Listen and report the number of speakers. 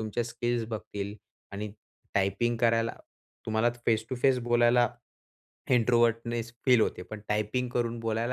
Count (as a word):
one